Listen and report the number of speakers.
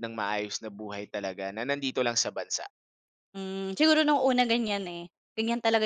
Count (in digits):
2